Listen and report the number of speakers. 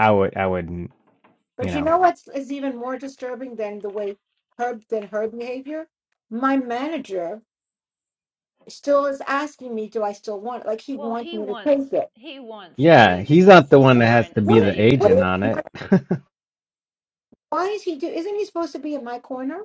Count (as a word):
three